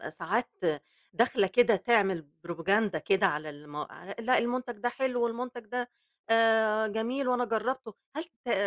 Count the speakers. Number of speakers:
one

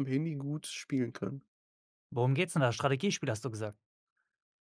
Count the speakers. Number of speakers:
two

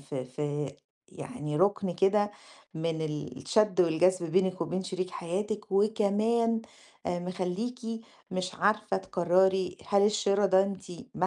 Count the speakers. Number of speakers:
one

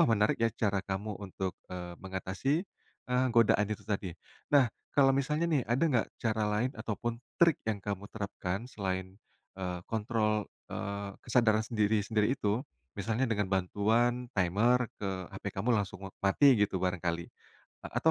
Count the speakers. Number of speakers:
one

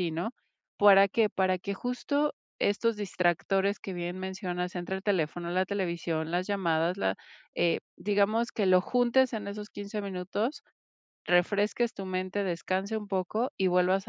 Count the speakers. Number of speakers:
one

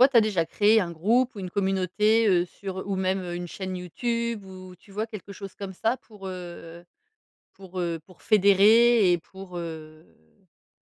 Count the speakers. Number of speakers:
one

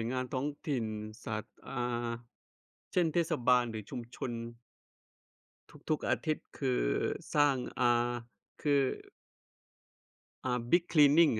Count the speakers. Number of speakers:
one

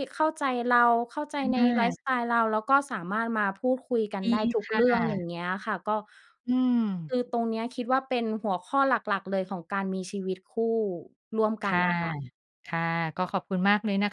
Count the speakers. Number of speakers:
two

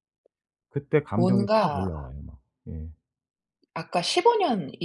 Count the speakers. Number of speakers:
two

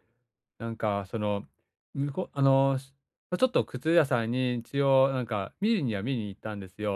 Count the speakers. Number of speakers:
one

